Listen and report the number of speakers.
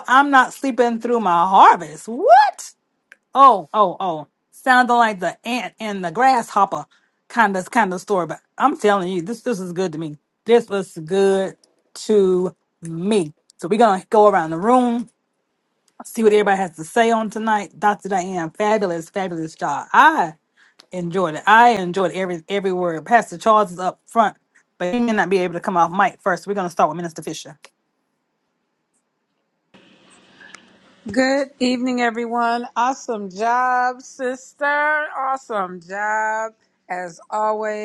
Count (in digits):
2